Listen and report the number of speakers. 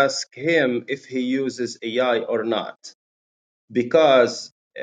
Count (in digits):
1